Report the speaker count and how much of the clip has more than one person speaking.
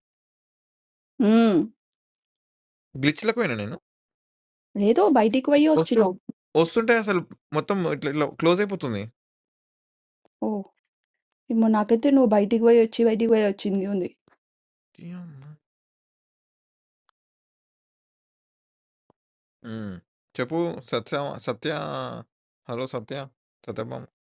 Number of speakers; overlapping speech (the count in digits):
2, about 1%